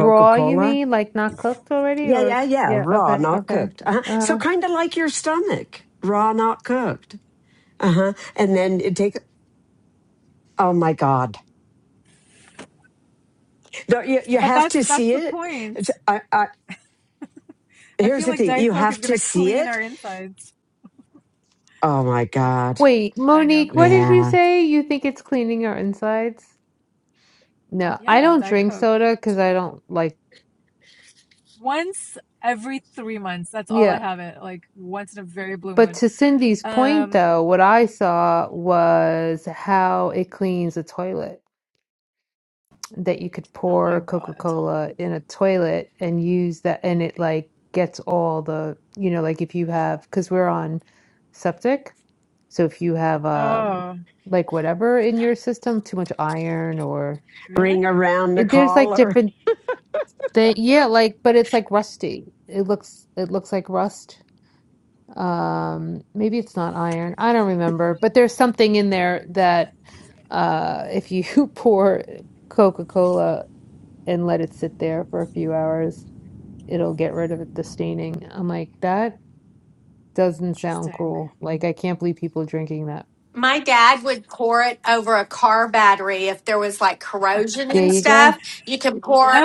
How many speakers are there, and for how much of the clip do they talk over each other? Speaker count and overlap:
4, about 13%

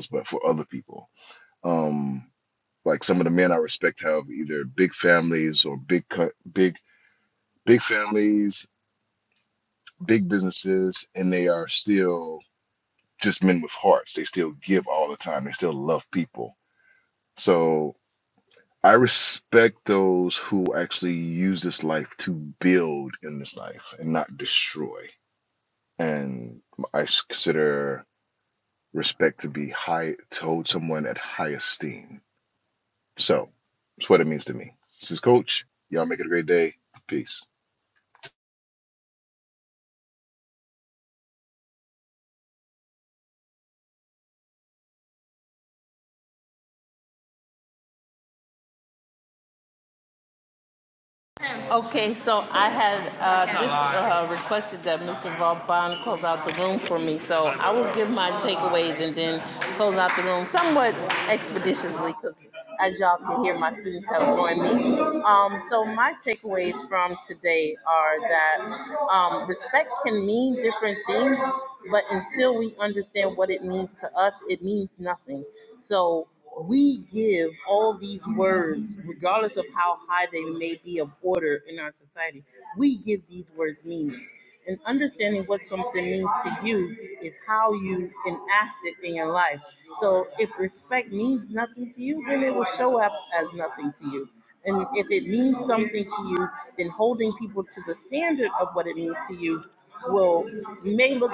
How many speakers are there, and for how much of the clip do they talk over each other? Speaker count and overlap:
2, no overlap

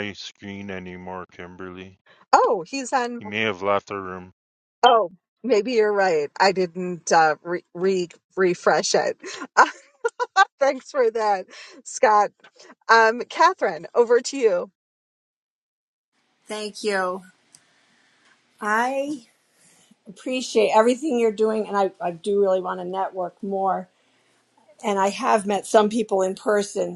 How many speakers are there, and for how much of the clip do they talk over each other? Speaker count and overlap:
3, no overlap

